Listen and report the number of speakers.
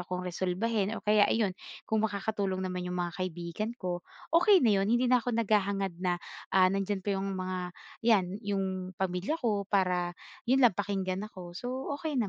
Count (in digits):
1